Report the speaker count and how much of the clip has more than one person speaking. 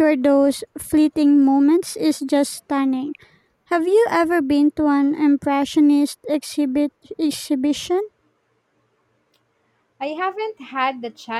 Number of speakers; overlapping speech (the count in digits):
2, no overlap